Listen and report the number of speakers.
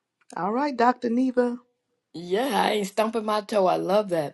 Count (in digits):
2